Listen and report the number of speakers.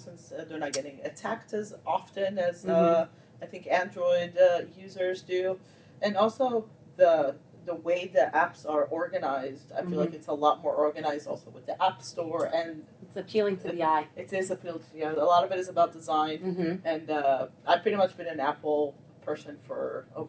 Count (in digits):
2